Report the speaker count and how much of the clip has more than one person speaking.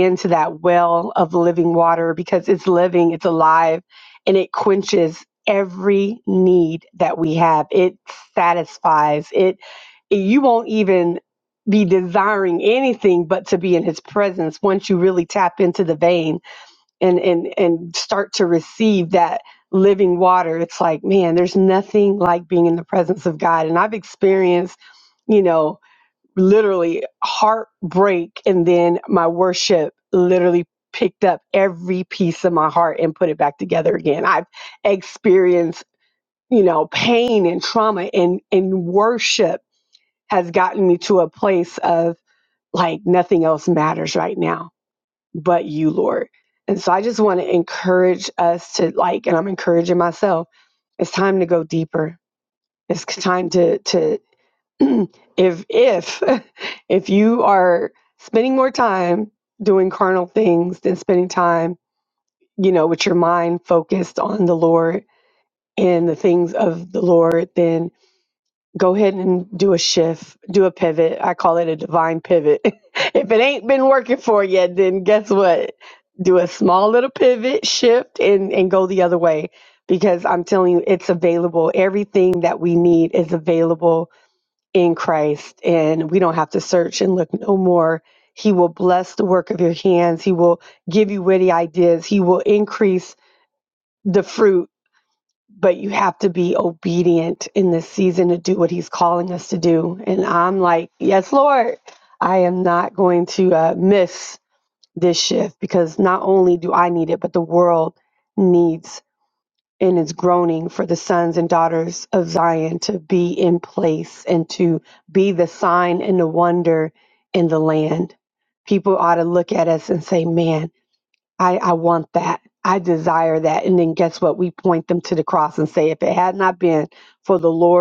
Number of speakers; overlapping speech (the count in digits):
1, no overlap